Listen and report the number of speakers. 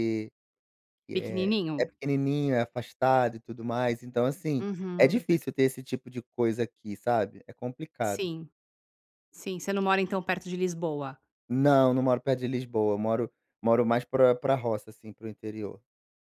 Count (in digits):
2